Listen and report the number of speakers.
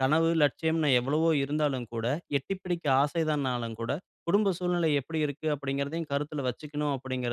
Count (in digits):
1